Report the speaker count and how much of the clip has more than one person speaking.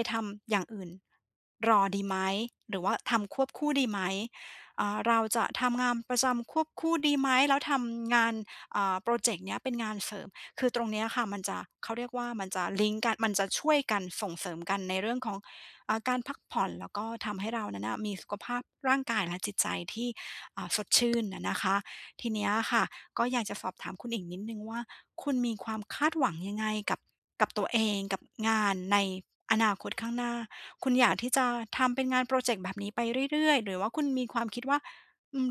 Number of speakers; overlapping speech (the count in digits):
1, no overlap